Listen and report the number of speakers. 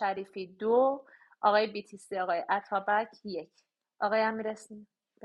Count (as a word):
one